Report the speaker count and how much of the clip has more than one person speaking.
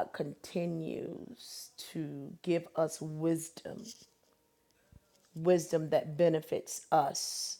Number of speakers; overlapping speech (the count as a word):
one, no overlap